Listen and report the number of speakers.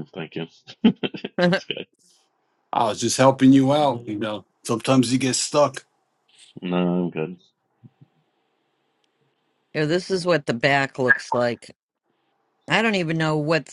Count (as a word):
three